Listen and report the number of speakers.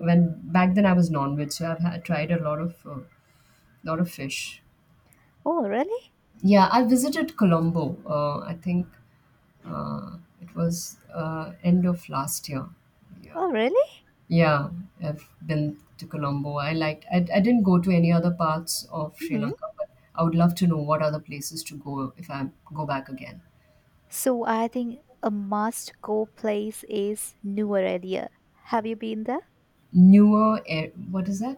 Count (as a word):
two